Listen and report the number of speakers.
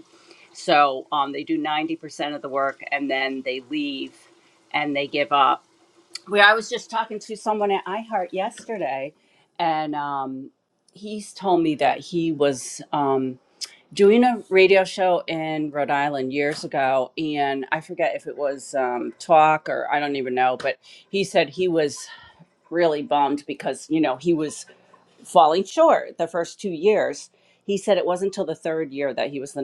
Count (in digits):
1